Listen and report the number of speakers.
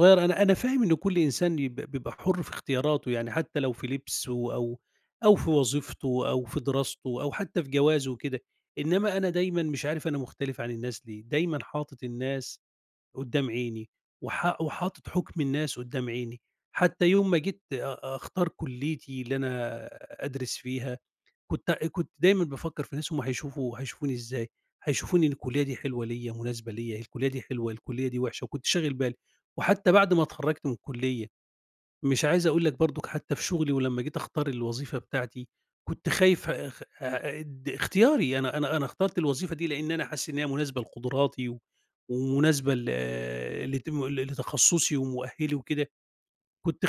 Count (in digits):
1